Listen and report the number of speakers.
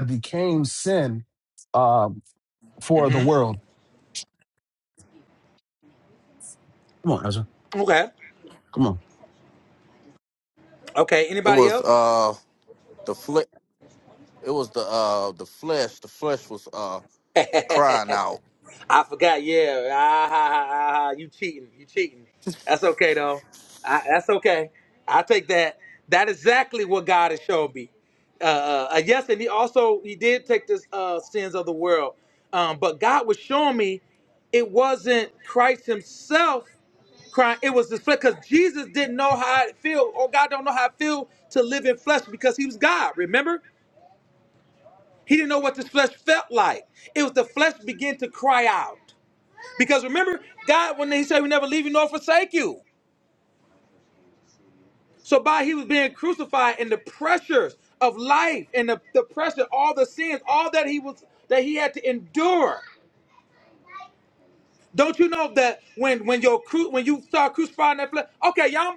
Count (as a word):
three